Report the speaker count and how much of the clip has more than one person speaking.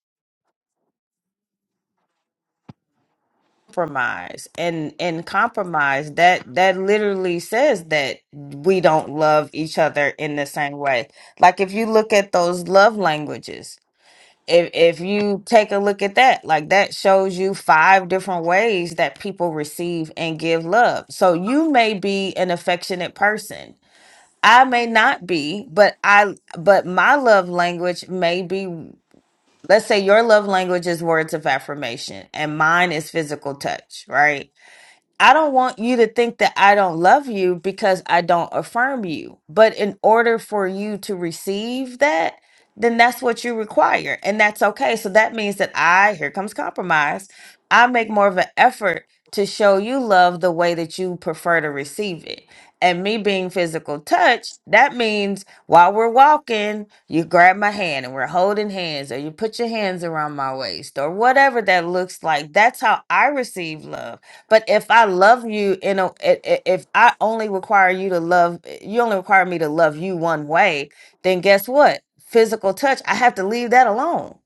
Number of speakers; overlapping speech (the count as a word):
one, no overlap